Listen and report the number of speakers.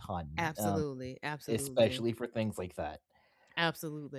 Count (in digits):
2